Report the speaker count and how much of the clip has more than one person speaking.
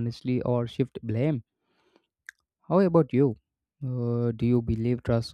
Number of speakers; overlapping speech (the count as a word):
one, no overlap